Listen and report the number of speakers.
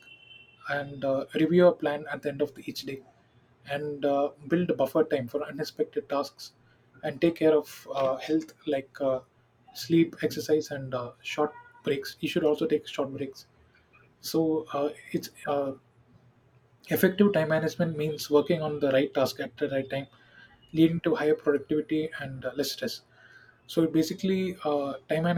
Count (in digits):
1